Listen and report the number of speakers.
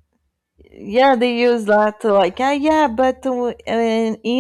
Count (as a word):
one